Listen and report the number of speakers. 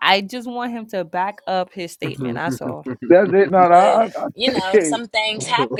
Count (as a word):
three